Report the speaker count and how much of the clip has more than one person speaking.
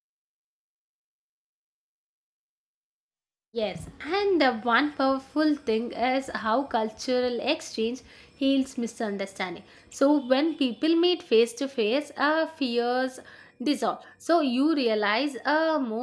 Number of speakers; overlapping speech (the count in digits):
1, no overlap